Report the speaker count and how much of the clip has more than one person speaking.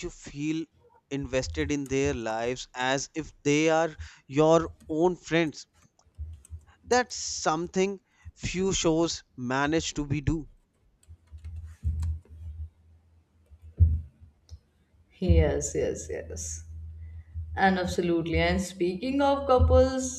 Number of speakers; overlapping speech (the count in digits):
2, no overlap